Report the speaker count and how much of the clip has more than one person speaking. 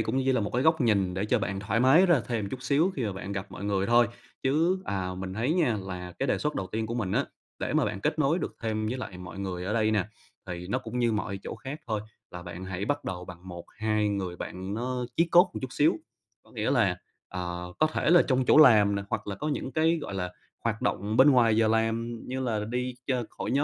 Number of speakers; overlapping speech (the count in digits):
1, no overlap